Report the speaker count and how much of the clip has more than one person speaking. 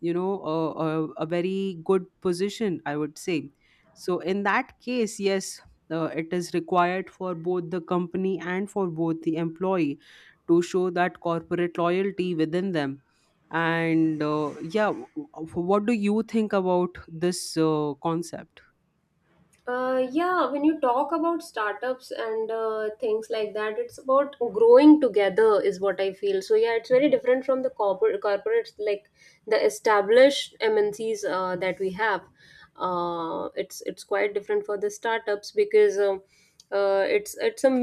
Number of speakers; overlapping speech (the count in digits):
2, no overlap